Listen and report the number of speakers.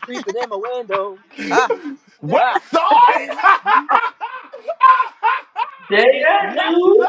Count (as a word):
three